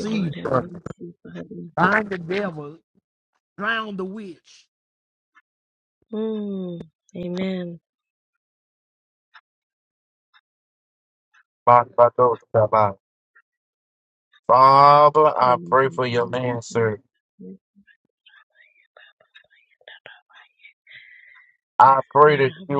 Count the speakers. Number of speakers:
3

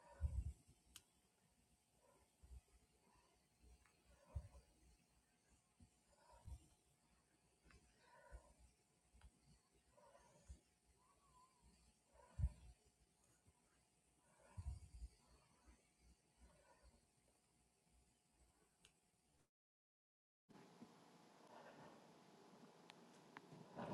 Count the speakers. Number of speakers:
0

